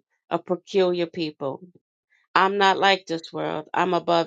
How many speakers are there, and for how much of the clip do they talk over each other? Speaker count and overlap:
one, no overlap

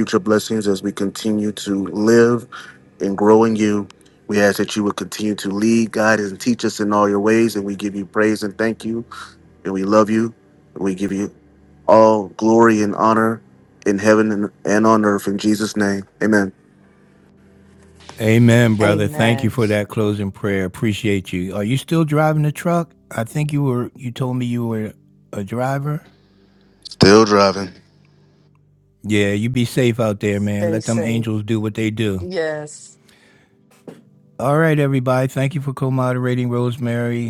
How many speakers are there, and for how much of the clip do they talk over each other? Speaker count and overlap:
three, about 4%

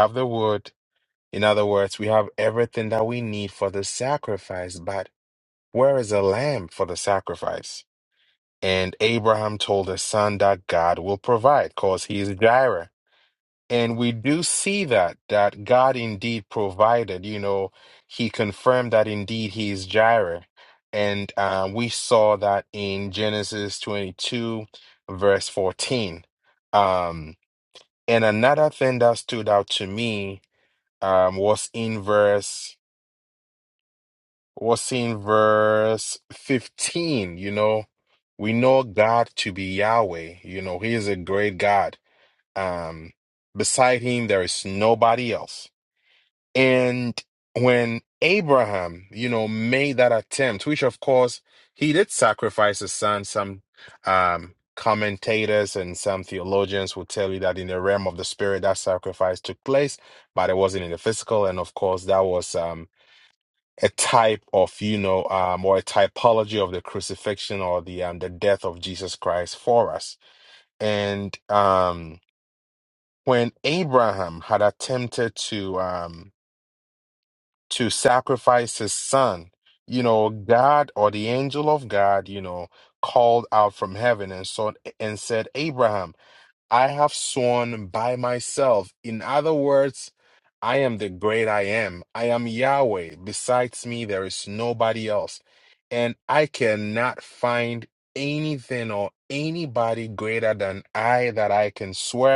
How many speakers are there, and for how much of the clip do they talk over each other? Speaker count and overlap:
one, no overlap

